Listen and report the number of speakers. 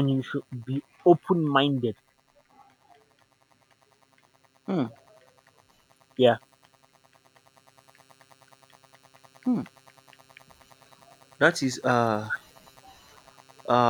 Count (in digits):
2